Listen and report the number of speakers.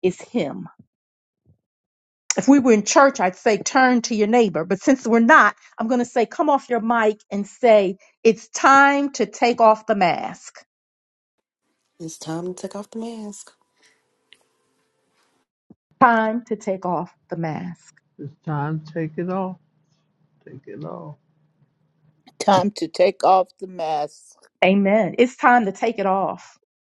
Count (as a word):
four